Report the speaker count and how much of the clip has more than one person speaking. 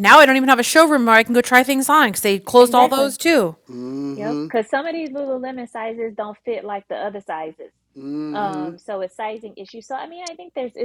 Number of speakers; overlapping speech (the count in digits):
3, about 13%